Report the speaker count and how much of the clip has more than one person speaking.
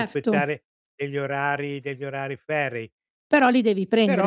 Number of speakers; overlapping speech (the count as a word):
two, about 16%